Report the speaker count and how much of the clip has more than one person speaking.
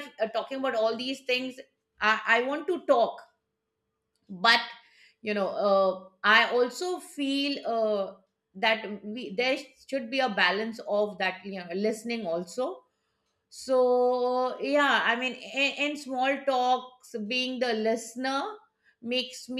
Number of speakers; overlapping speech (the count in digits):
1, no overlap